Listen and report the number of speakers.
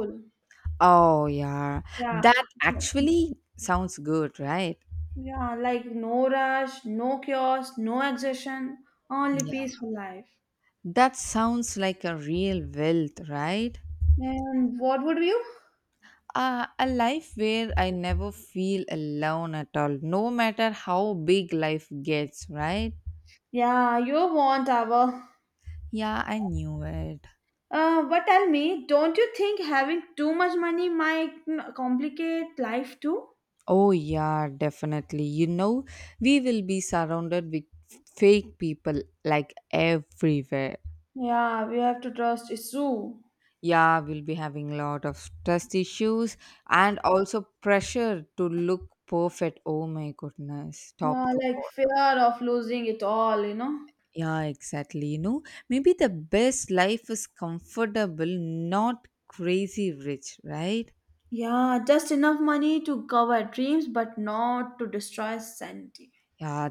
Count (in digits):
2